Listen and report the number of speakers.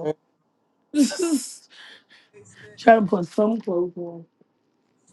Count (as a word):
one